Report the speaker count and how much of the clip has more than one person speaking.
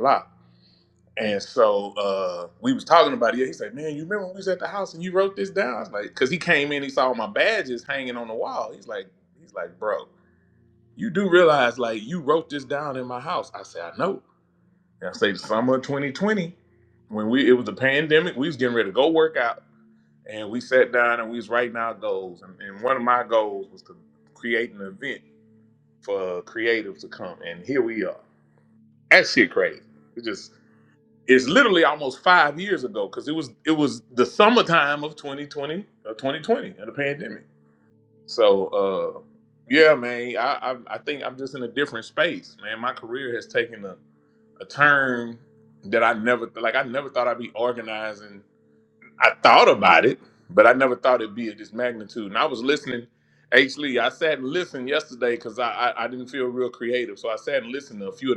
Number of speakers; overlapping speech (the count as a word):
one, no overlap